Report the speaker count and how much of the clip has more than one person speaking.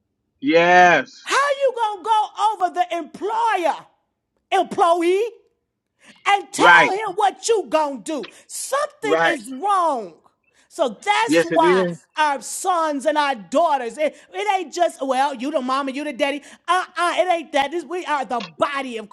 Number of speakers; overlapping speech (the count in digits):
2, about 7%